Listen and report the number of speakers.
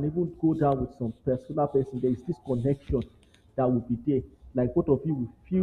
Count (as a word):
one